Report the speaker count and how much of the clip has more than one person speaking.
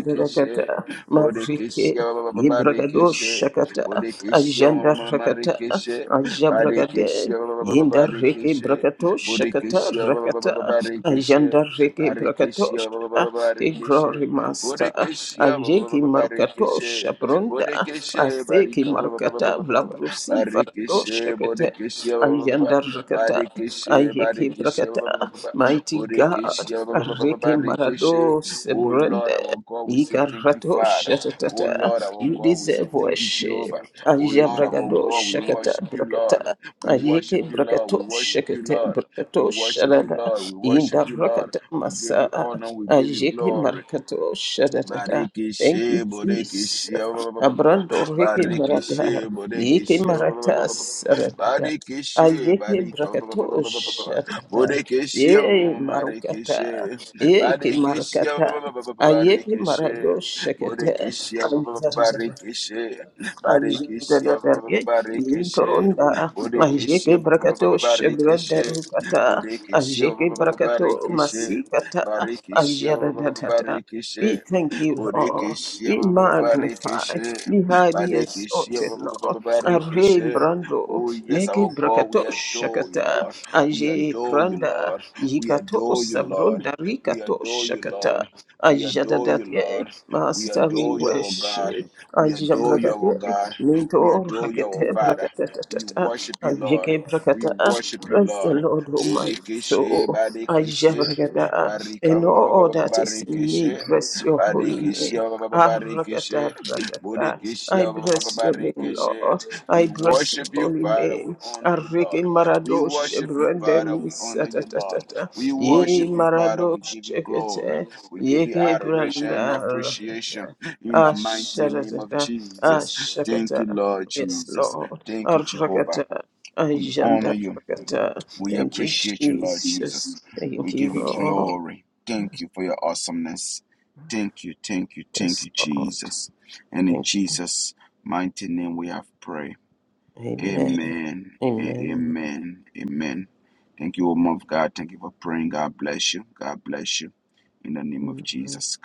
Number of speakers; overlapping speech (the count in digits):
2, about 57%